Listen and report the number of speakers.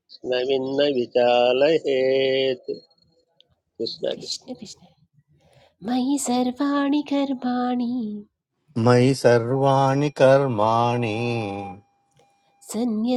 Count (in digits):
3